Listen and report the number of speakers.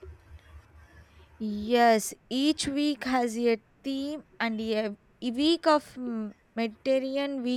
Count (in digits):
1